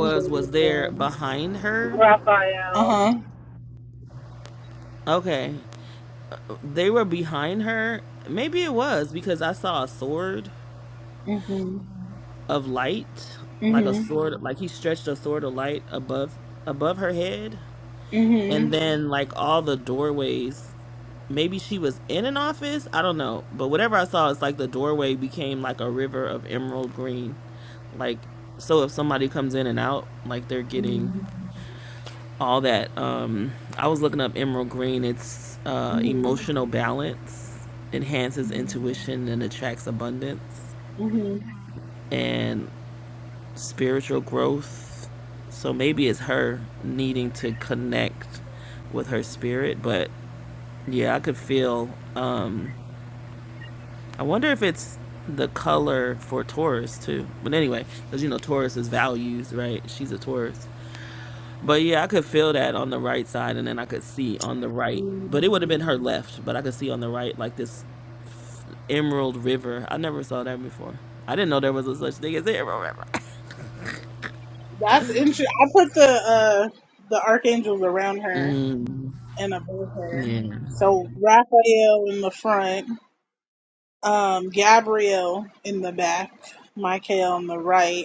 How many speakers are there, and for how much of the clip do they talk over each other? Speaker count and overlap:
3, about 5%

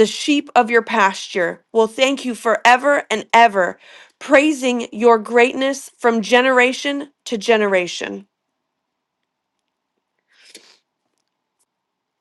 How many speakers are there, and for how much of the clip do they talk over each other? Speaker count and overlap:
1, no overlap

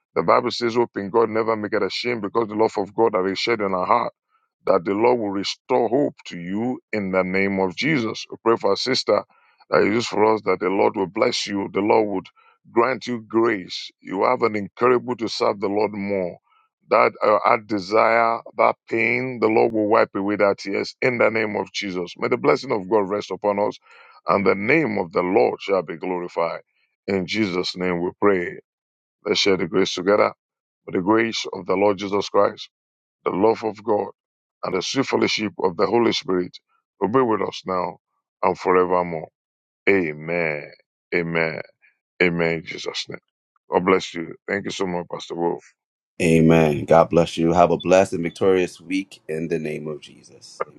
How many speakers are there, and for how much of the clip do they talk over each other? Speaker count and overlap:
2, no overlap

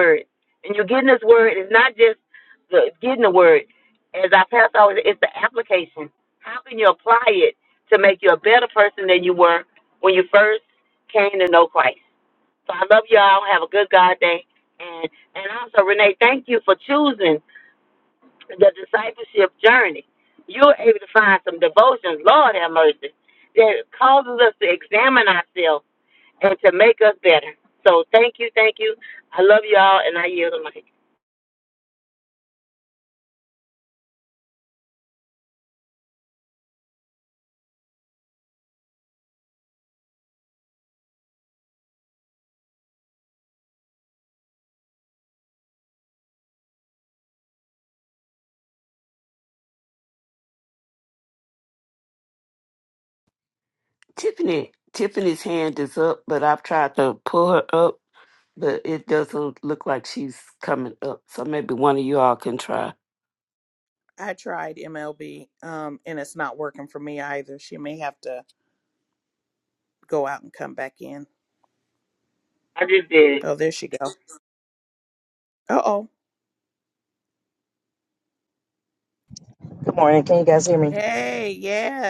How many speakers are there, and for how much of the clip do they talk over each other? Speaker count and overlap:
4, under 1%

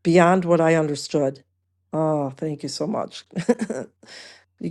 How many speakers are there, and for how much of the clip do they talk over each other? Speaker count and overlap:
1, no overlap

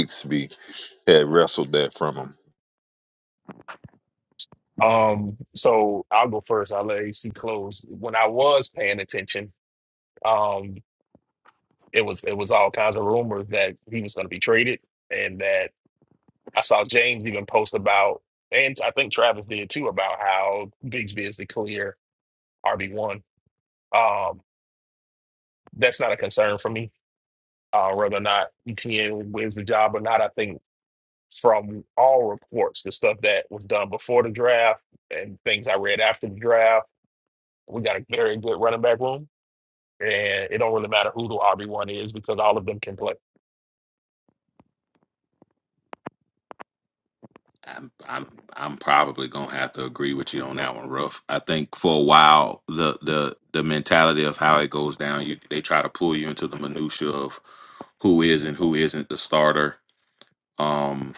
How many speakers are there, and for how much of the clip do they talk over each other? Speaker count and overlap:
3, no overlap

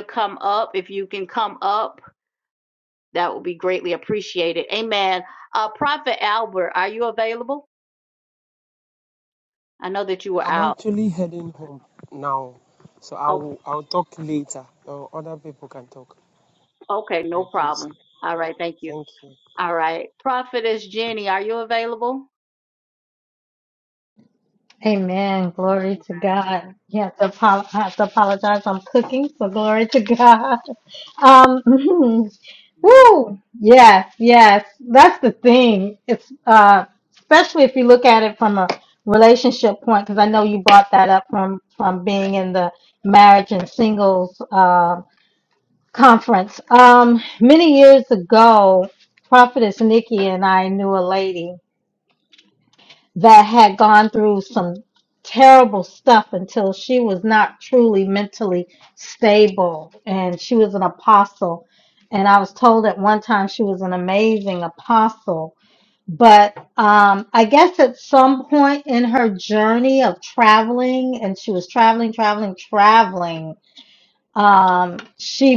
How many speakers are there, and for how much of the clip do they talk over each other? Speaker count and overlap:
3, about 2%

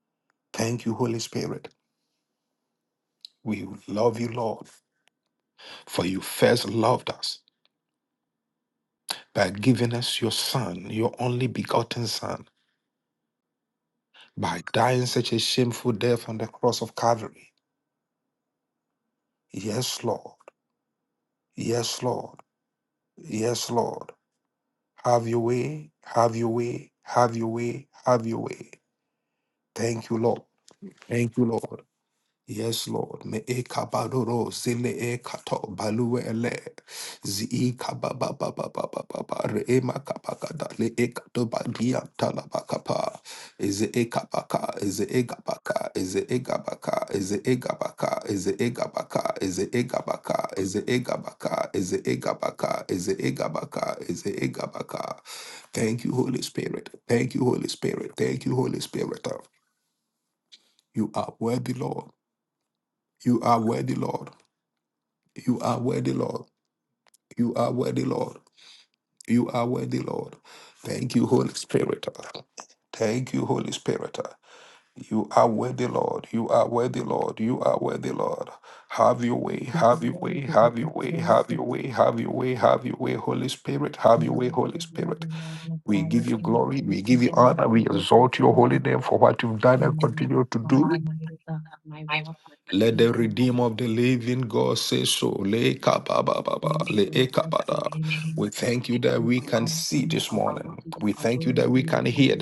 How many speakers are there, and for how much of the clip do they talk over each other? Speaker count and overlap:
2, about 13%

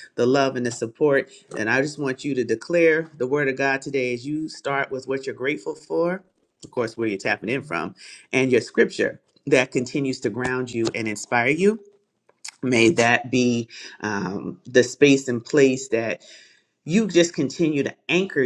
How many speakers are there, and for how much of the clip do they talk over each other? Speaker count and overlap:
1, no overlap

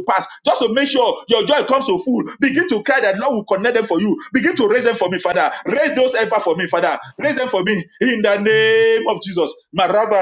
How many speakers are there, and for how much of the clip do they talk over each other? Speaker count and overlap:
1, no overlap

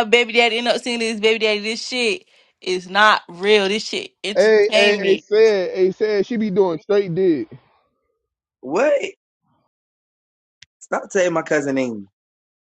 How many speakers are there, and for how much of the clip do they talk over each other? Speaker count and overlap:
3, about 7%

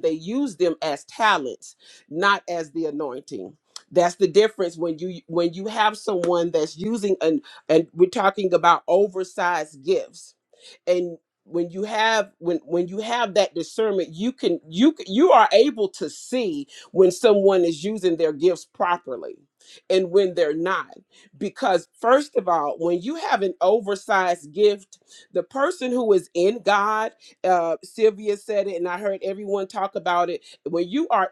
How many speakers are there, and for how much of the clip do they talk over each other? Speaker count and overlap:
1, no overlap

